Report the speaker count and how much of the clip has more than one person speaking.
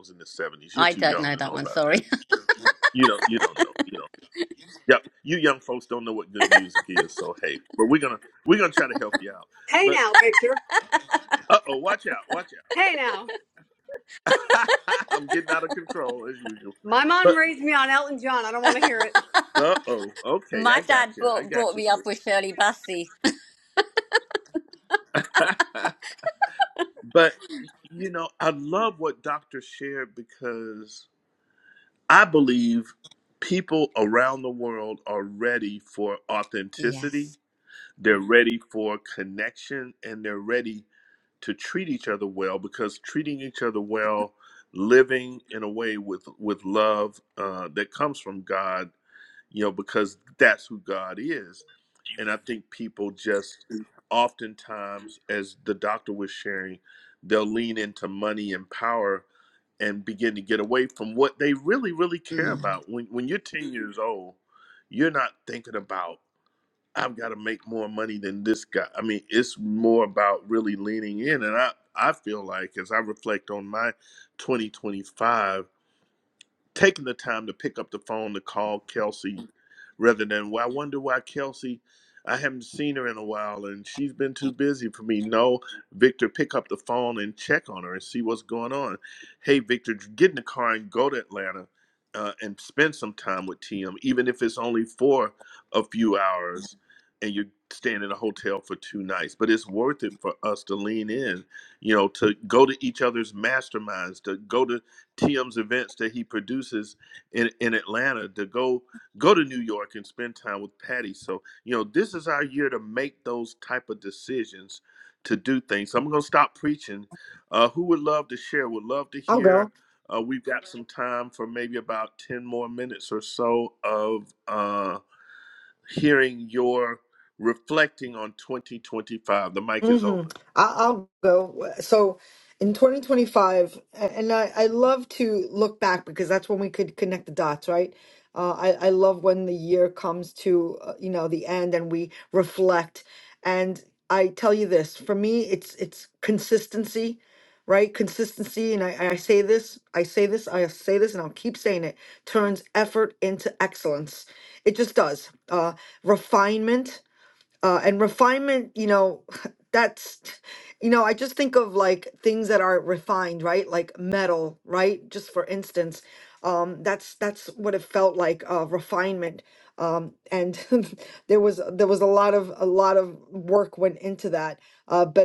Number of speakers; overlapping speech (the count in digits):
4, about 3%